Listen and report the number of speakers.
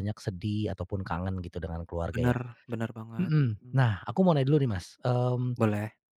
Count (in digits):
2